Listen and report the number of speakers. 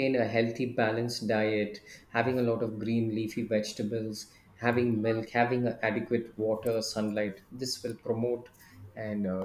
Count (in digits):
1